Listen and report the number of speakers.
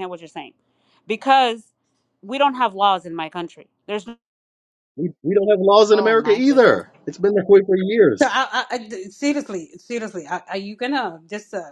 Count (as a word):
three